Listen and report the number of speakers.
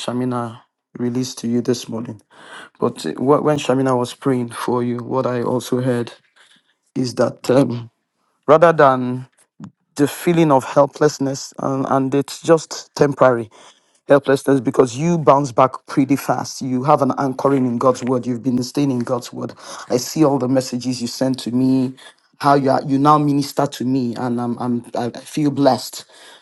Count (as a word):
one